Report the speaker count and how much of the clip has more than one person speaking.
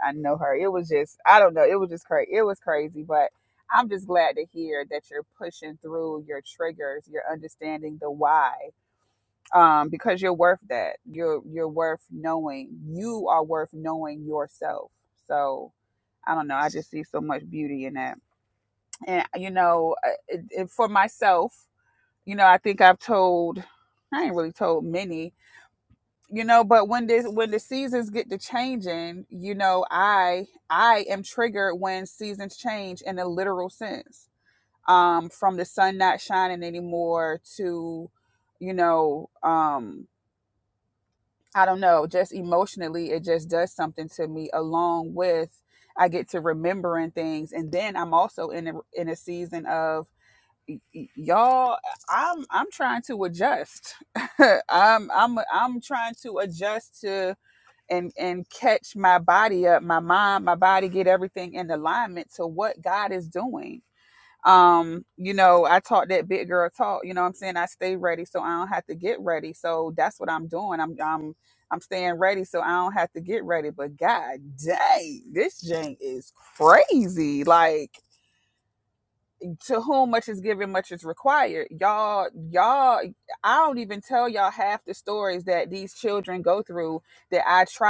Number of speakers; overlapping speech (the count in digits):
1, no overlap